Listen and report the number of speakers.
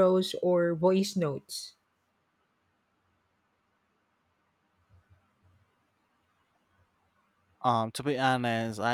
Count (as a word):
two